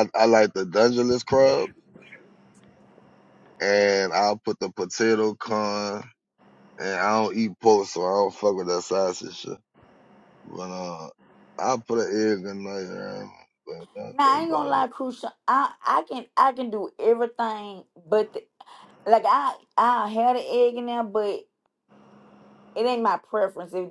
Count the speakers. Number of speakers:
two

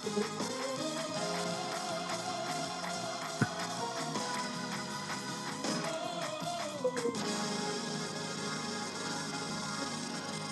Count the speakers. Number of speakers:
zero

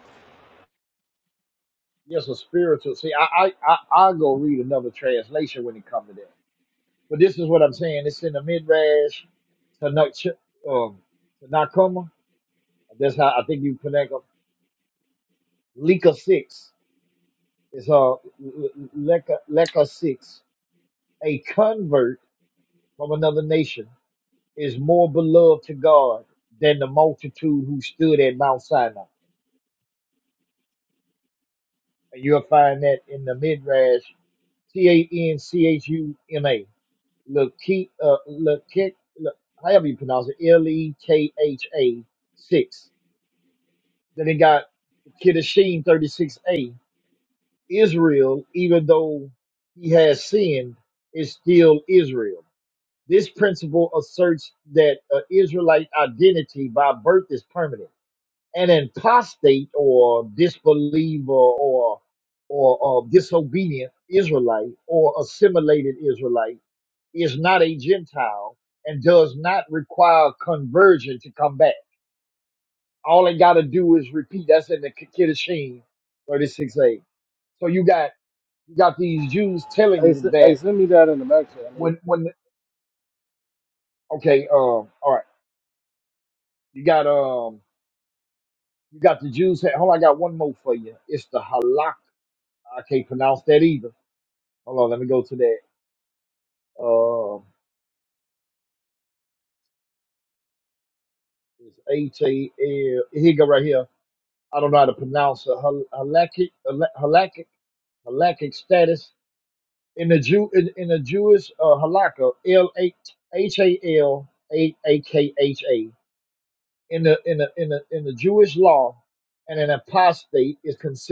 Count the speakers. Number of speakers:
two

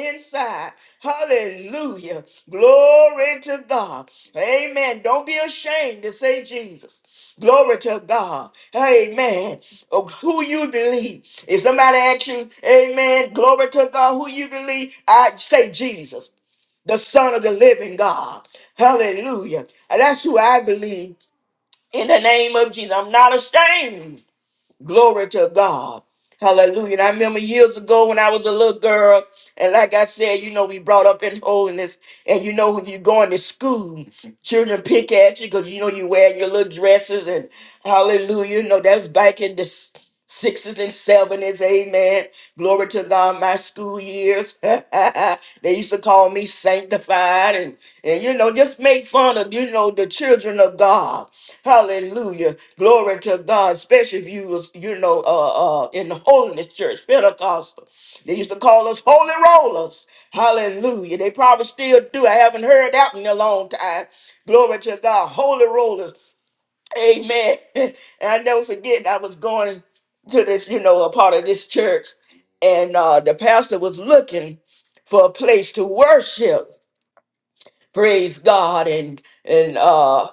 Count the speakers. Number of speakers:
one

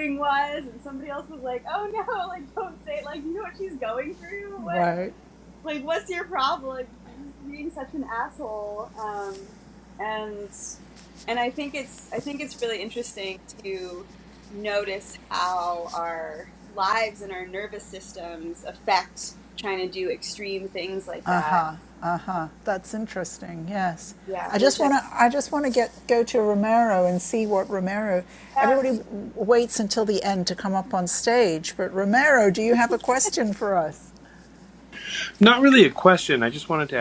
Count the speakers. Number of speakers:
three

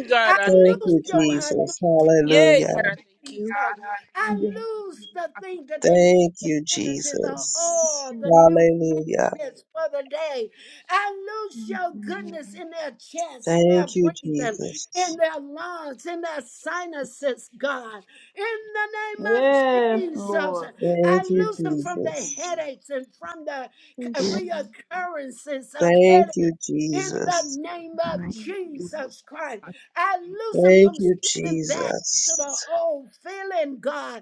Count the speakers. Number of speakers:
four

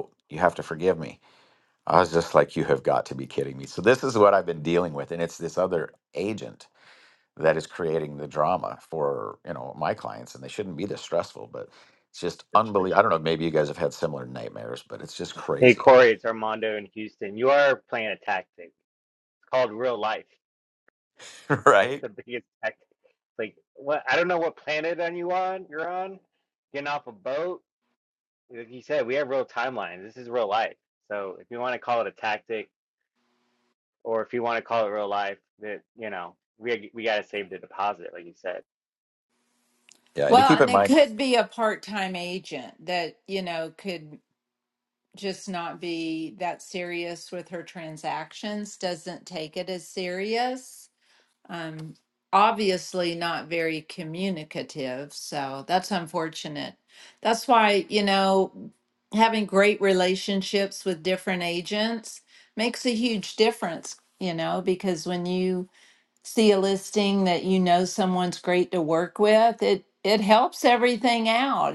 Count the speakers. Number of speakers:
three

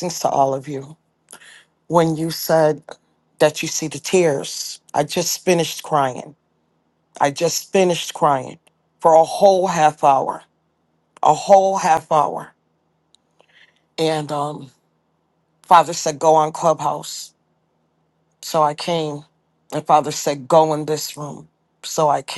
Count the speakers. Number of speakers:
one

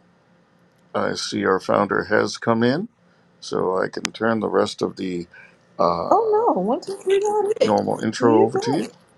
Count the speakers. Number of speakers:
two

